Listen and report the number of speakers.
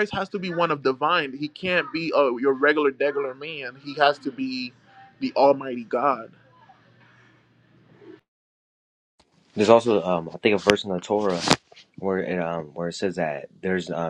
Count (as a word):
two